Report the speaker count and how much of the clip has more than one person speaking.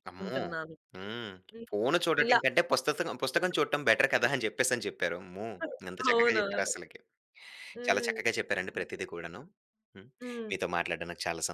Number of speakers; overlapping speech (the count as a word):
two, about 14%